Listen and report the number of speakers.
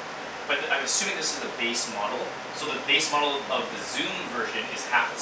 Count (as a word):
one